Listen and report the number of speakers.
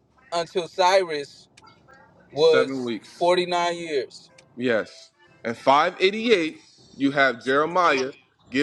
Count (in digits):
2